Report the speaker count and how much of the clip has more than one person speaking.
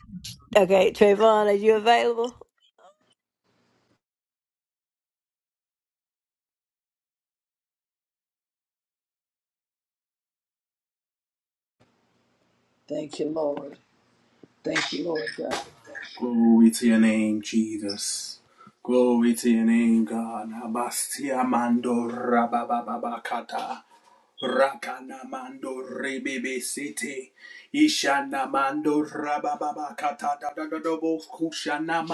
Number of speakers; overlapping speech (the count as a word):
three, no overlap